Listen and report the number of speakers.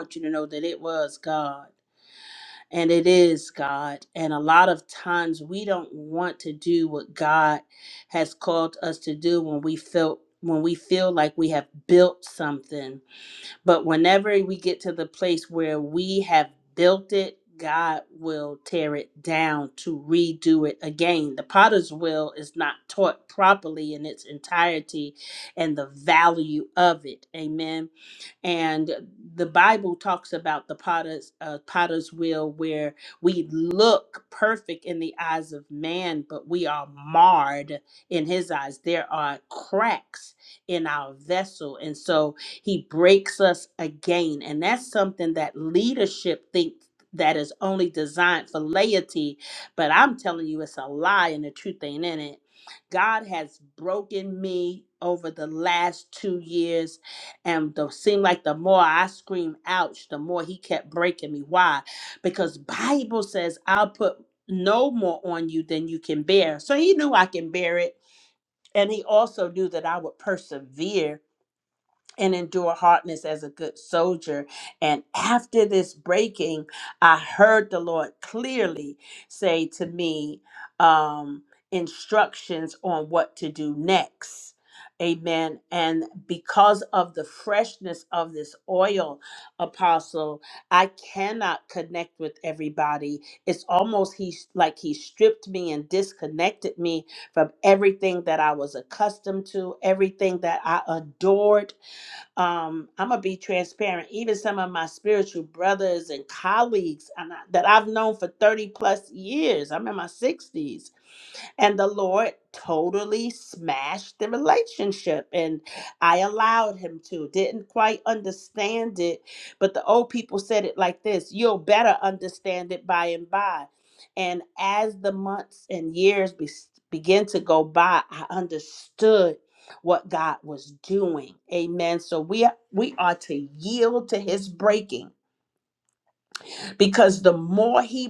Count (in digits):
1